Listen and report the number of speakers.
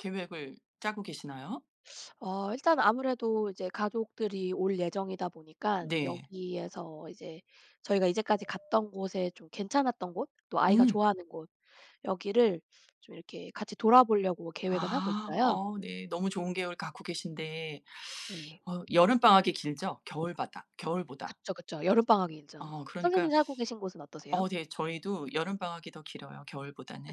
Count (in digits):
2